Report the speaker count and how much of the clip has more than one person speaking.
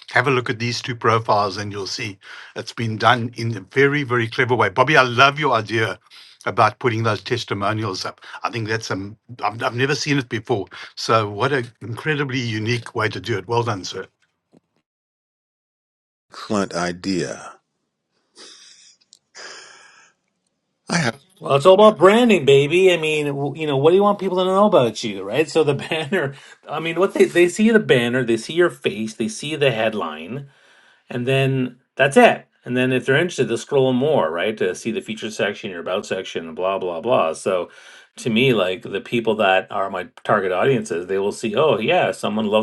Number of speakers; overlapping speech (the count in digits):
3, no overlap